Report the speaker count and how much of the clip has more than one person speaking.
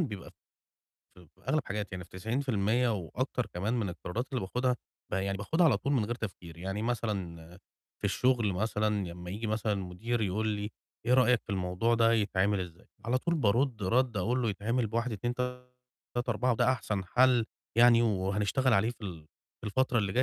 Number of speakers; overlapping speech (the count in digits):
1, no overlap